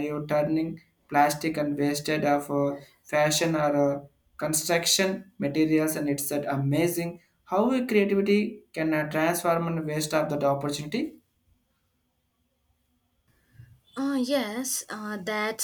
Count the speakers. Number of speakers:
2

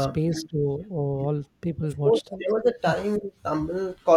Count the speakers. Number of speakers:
2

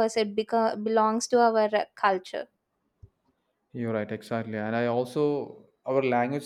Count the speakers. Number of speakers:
2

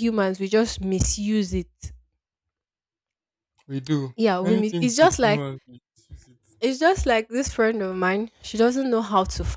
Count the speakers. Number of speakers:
2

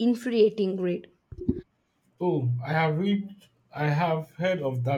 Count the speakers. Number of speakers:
2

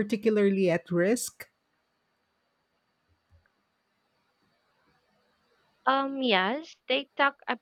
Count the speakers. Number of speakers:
2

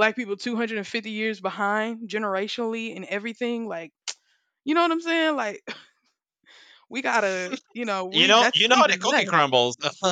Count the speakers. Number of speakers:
2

